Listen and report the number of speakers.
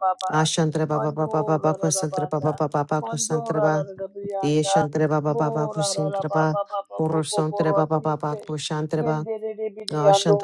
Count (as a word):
two